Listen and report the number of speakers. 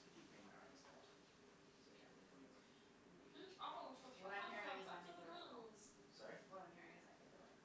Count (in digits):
3